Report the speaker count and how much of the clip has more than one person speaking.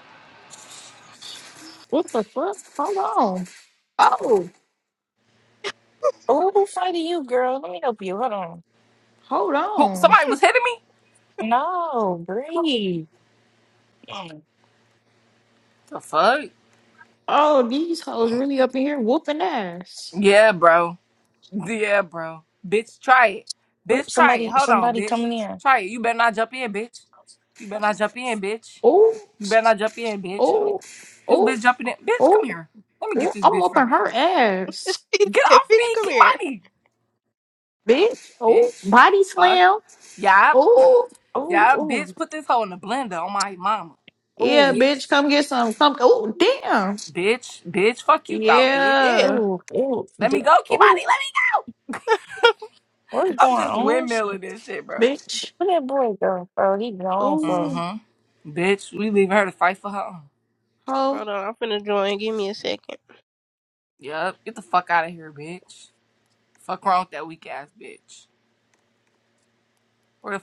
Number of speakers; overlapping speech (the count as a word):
four, about 13%